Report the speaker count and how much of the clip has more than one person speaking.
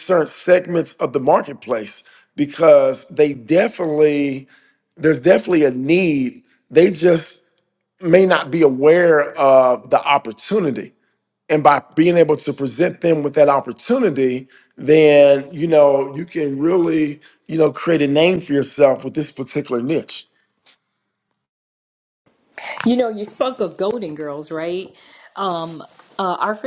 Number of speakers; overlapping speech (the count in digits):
2, no overlap